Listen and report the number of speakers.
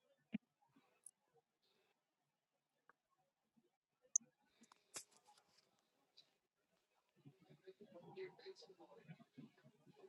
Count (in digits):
0